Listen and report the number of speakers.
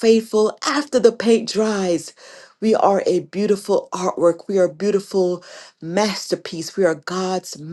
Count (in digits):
1